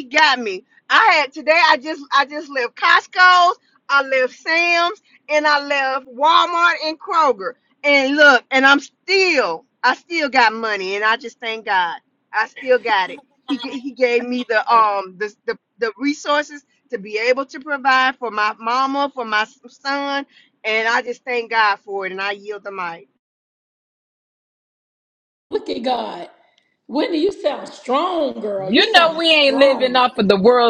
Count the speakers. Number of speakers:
3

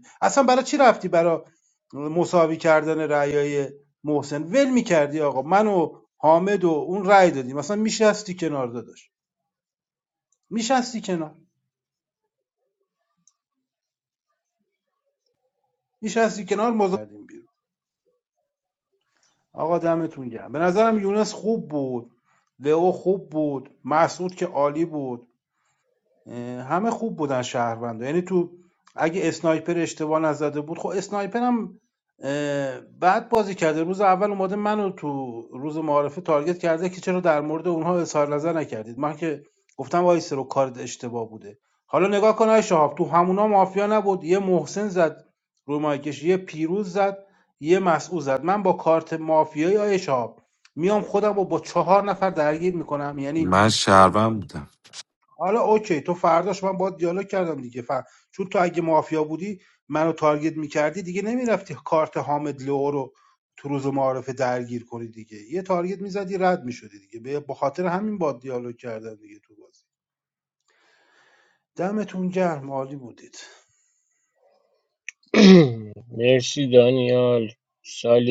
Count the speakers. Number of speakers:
3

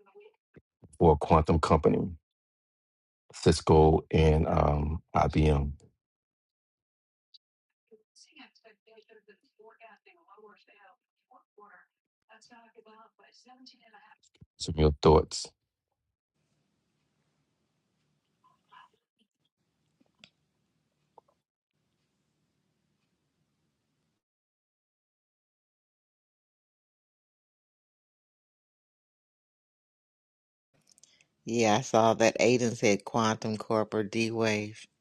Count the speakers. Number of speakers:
2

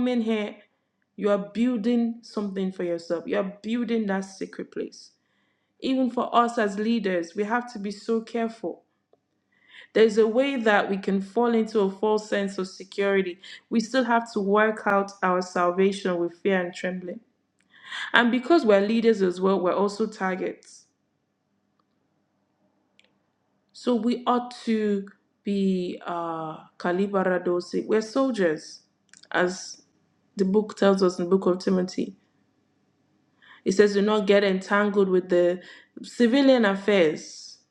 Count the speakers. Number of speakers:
1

